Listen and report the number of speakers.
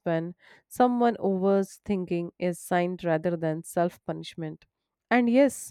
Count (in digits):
1